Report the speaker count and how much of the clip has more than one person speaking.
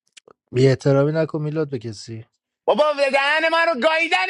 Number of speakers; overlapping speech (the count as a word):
two, no overlap